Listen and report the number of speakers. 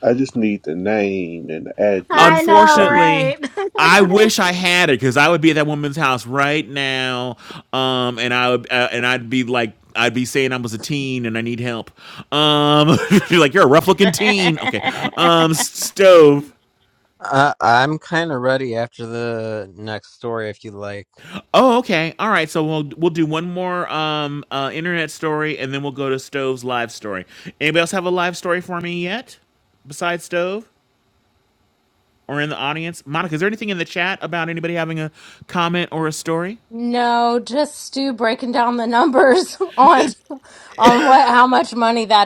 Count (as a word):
four